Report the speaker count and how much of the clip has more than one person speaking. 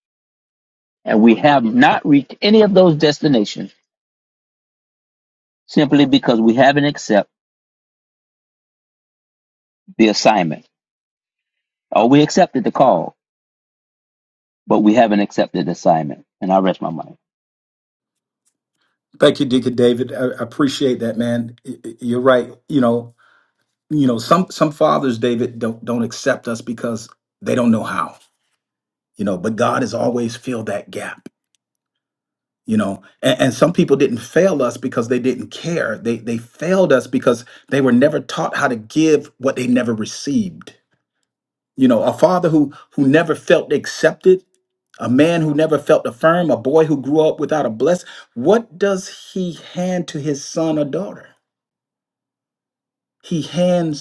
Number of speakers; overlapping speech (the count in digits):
2, no overlap